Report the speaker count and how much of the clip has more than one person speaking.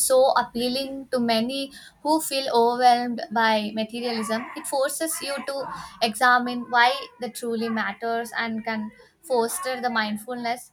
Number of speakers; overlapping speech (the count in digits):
1, no overlap